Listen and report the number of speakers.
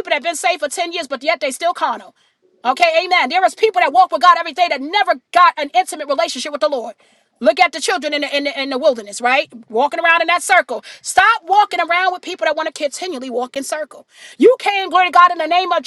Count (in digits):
1